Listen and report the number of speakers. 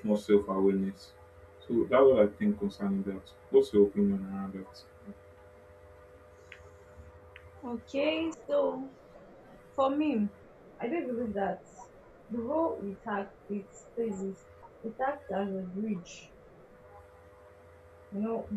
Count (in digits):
2